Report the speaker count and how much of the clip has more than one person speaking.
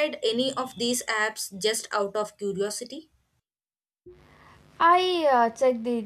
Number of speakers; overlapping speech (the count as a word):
two, no overlap